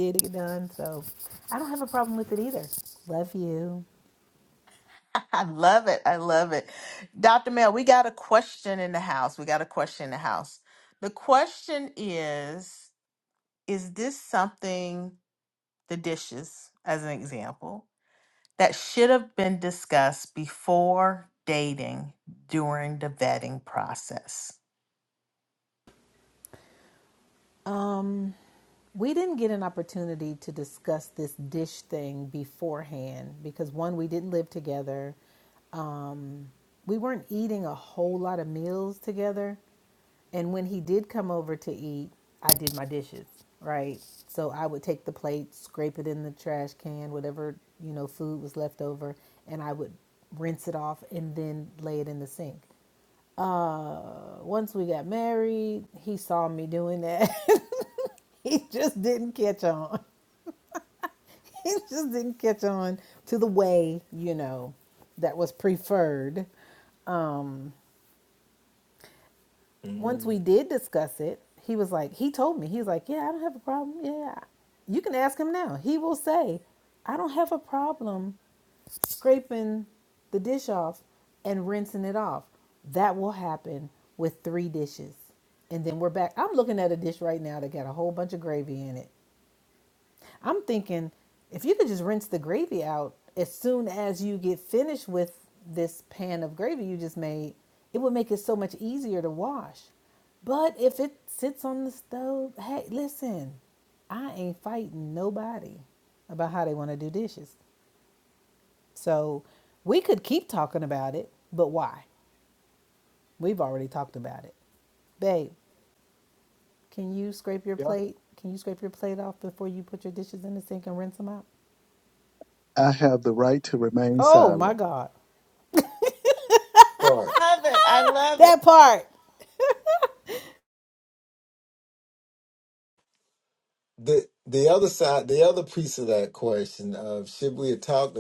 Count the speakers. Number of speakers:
four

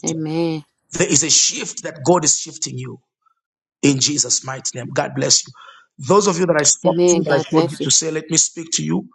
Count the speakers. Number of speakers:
two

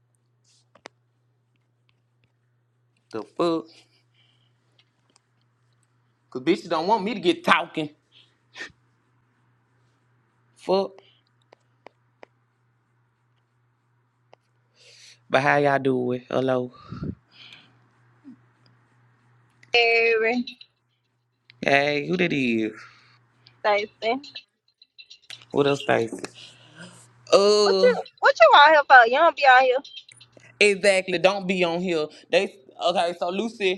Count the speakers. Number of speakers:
two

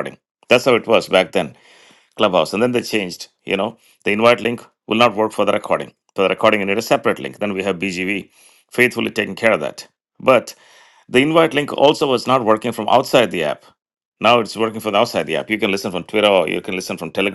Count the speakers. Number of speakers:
one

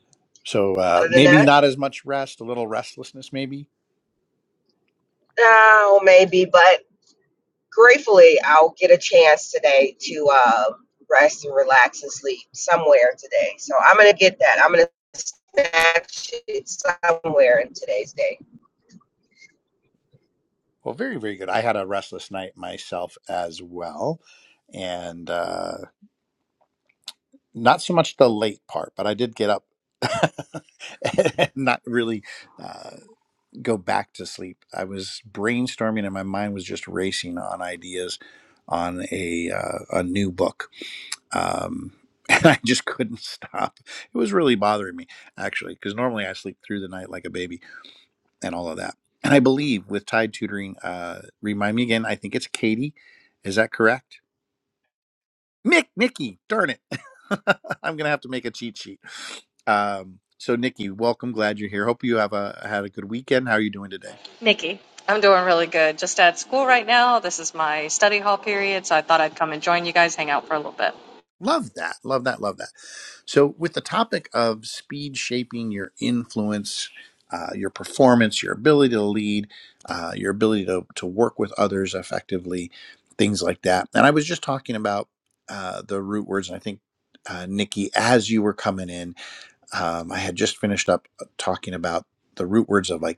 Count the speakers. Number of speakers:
three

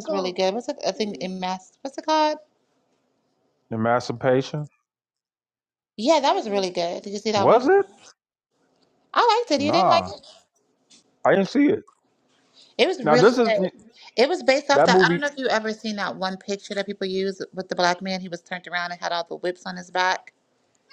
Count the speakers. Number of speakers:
two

